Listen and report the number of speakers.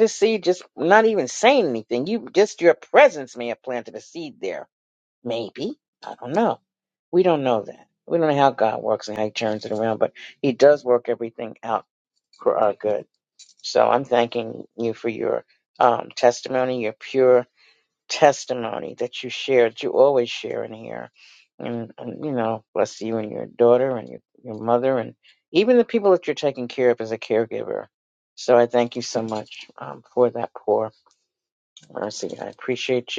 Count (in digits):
1